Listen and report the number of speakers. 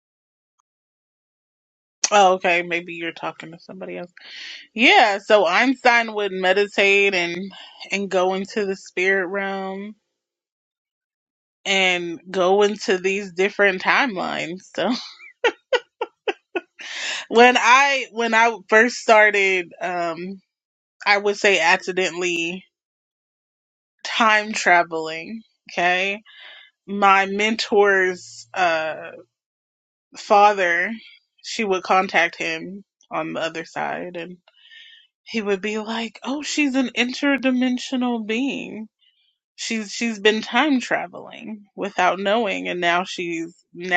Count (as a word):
one